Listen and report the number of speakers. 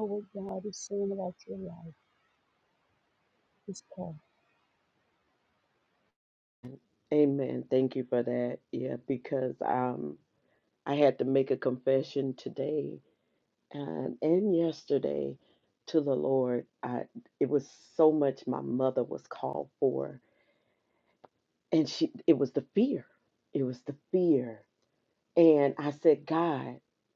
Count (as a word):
two